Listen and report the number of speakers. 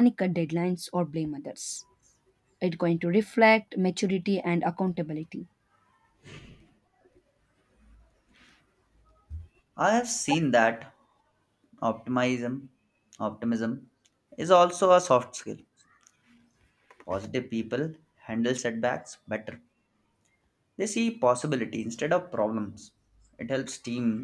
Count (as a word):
two